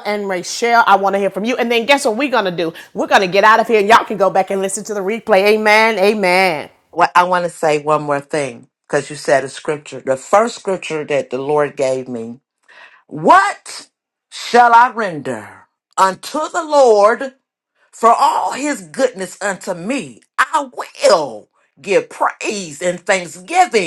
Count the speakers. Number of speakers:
2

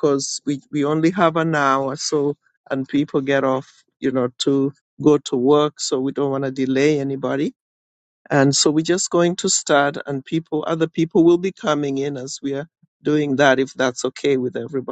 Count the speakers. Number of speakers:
1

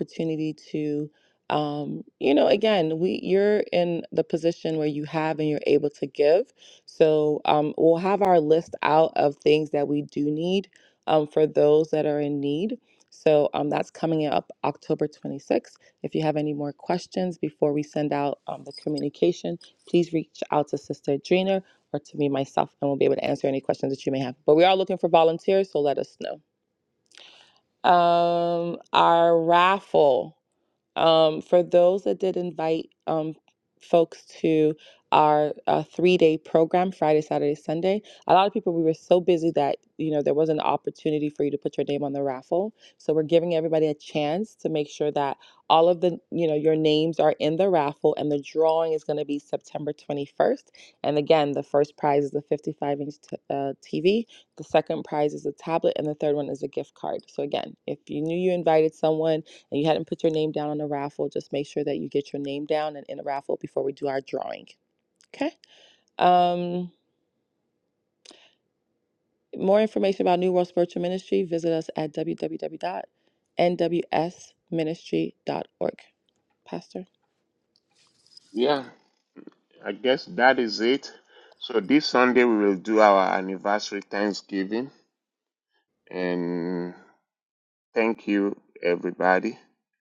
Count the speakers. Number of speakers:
2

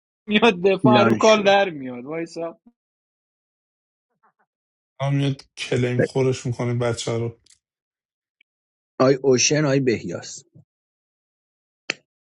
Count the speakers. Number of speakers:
3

